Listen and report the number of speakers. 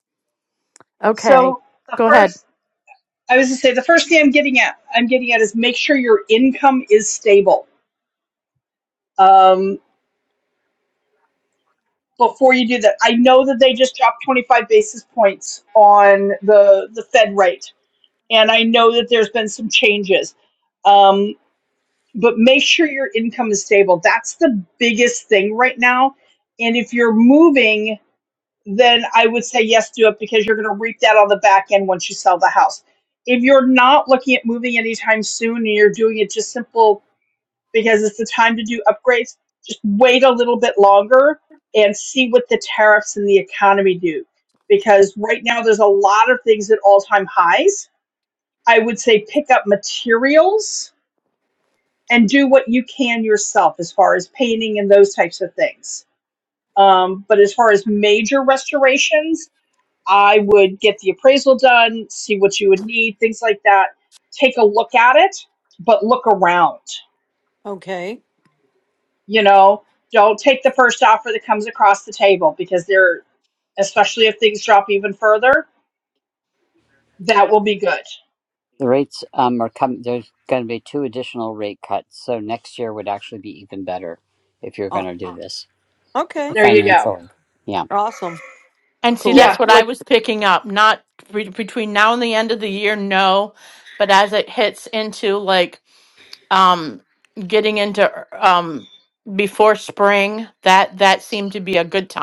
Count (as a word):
four